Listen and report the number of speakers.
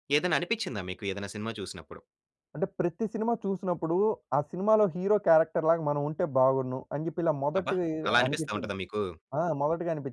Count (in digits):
2